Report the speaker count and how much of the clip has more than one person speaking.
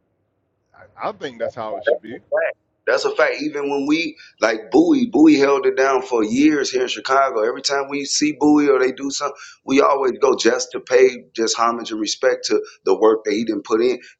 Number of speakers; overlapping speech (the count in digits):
2, no overlap